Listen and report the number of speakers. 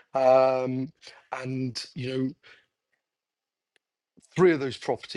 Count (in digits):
1